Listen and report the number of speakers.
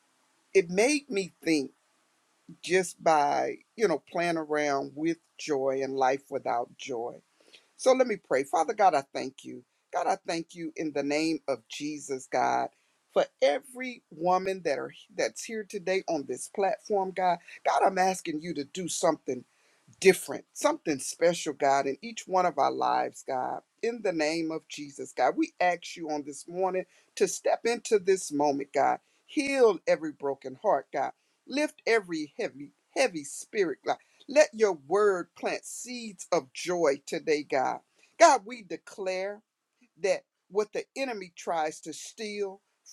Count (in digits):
1